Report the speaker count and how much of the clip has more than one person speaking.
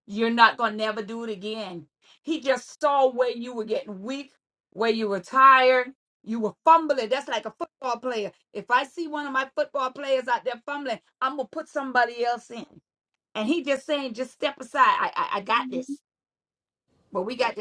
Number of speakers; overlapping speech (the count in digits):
1, no overlap